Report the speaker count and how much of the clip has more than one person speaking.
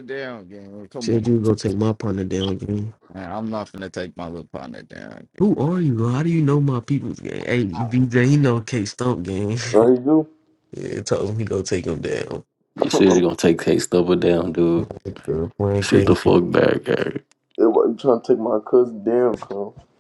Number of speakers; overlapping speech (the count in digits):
4, about 3%